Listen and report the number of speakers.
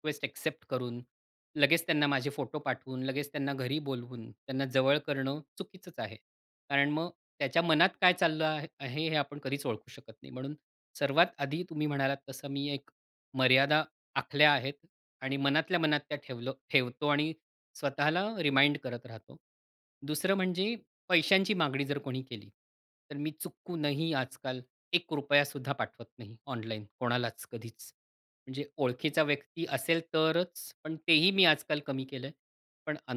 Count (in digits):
1